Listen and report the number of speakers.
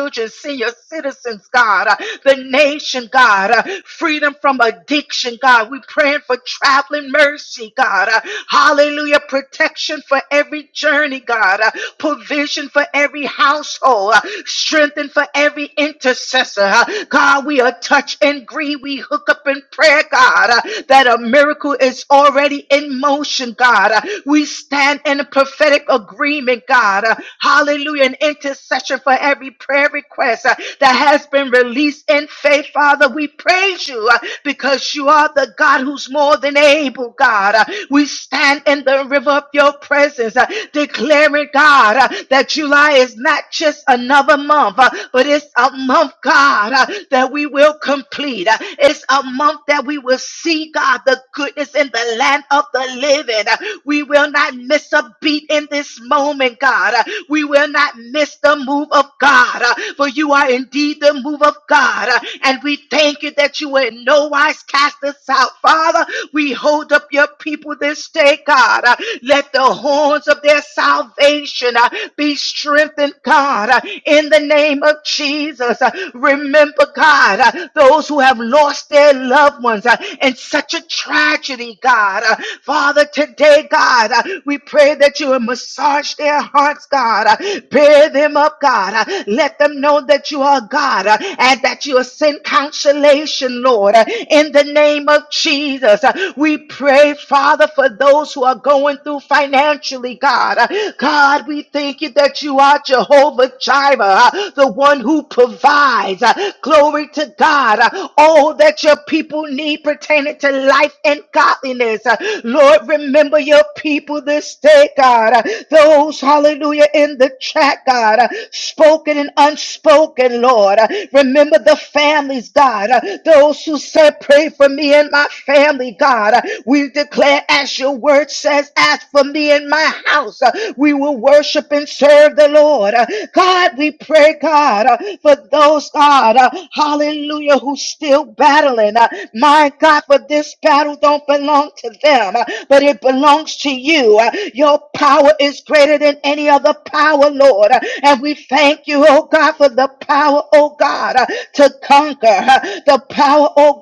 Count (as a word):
one